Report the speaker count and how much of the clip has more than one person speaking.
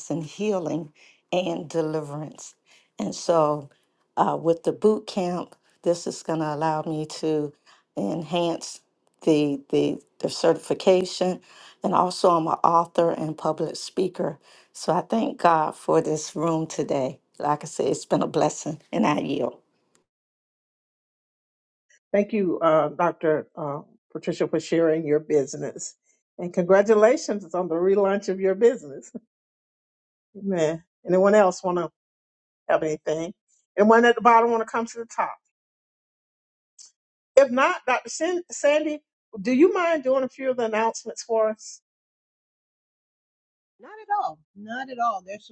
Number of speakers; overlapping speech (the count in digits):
3, no overlap